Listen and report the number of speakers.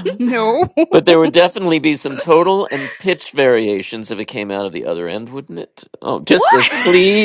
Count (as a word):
two